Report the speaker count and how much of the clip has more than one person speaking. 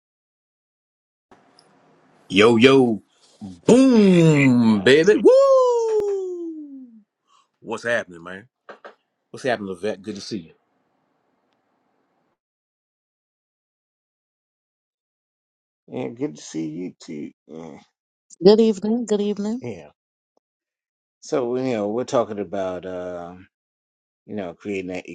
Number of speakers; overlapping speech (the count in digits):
3, about 1%